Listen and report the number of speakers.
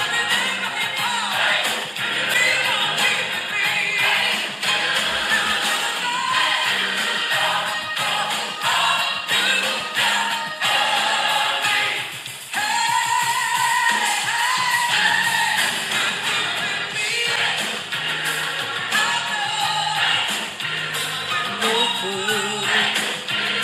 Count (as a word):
zero